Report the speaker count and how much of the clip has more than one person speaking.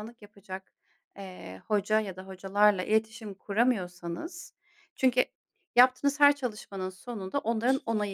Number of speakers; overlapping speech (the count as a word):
one, no overlap